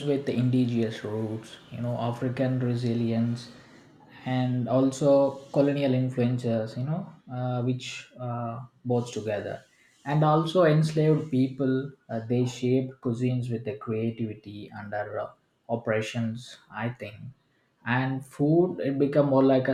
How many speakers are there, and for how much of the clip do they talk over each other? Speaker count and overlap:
1, no overlap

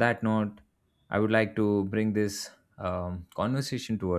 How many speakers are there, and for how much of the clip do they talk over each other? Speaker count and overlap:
1, no overlap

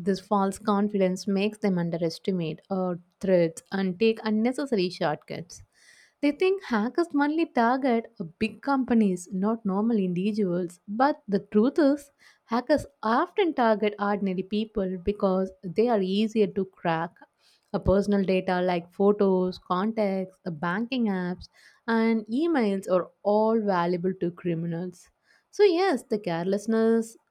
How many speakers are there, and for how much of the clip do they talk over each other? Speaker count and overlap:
1, no overlap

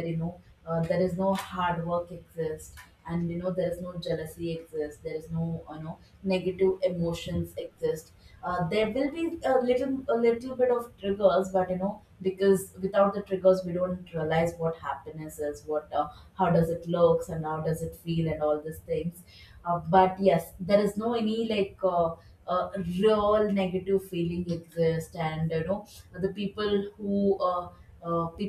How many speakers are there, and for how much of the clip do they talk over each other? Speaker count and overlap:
1, no overlap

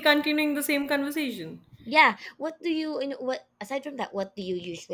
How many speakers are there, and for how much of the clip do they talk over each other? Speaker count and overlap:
2, no overlap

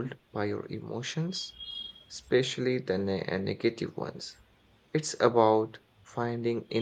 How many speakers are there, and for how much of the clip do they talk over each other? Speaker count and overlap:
1, no overlap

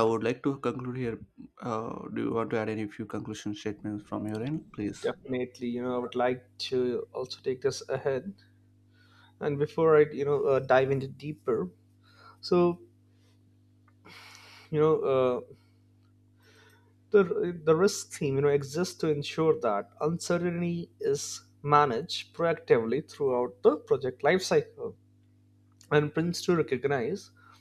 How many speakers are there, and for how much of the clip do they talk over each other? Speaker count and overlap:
2, under 1%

